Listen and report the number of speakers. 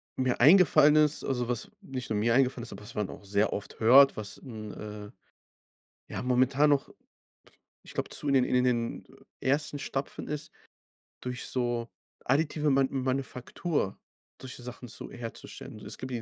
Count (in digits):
1